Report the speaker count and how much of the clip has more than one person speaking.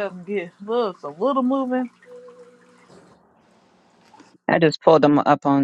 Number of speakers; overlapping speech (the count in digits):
2, no overlap